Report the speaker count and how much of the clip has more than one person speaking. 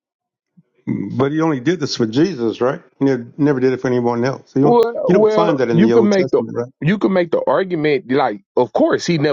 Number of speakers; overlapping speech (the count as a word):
two, about 16%